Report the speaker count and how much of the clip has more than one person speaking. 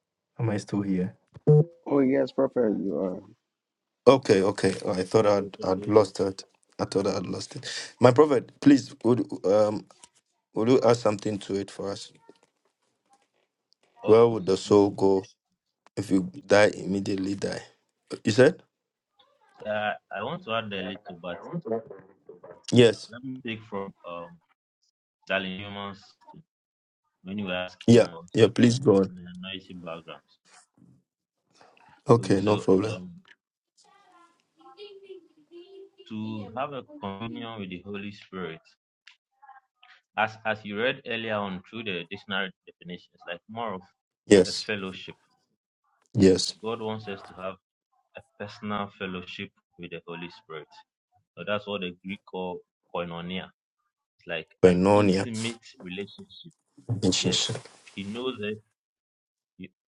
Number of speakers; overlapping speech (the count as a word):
three, about 4%